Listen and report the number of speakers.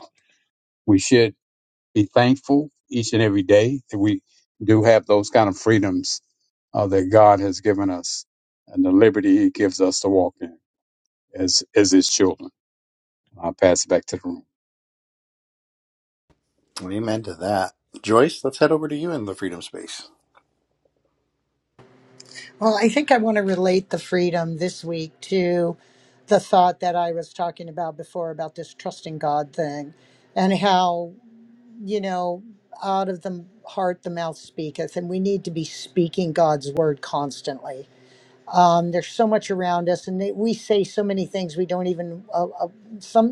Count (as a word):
three